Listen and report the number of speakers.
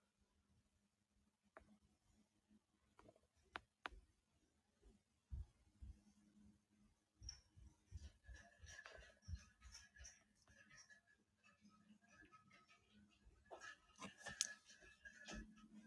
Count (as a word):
zero